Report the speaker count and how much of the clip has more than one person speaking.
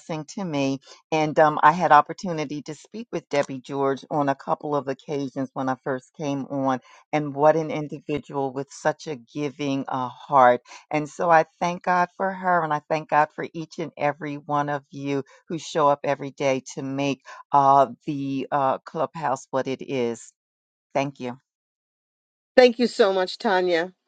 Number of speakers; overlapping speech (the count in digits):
2, no overlap